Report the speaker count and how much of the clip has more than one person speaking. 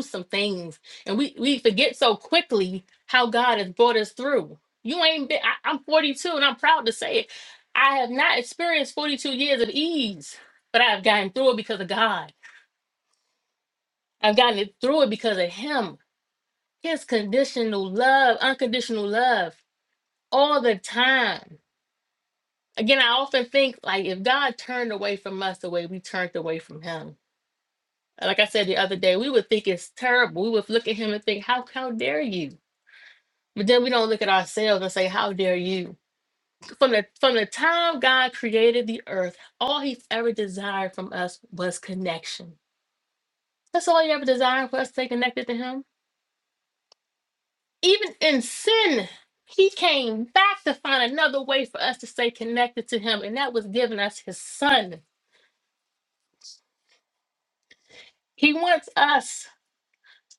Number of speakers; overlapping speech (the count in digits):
1, no overlap